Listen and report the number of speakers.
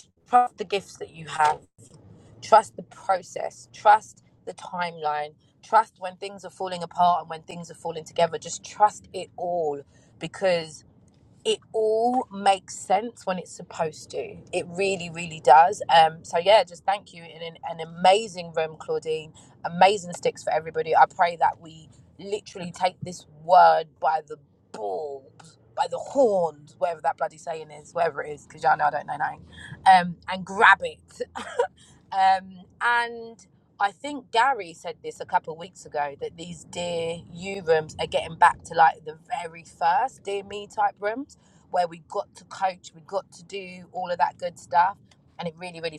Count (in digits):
1